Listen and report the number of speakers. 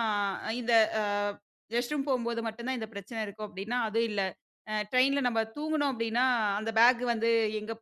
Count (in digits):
1